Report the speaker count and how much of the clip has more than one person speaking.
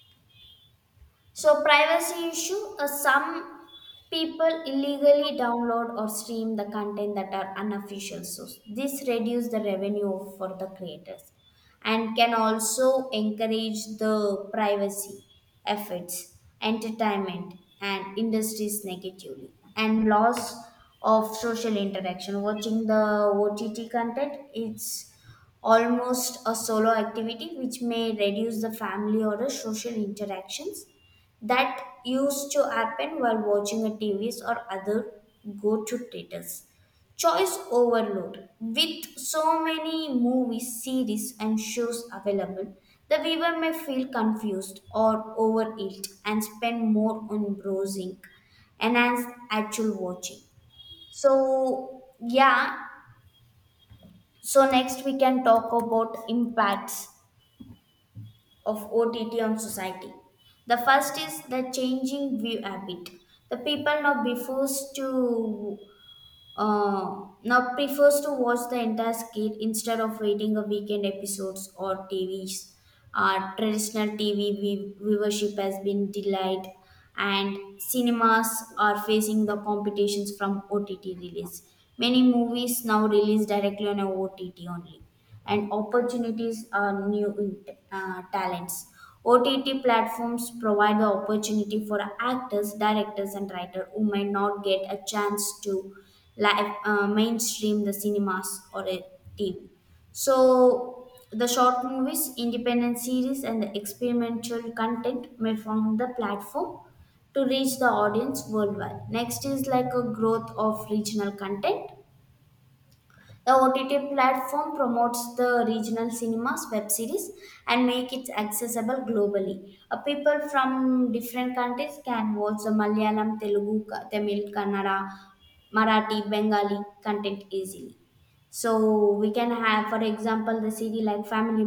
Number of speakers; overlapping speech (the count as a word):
one, no overlap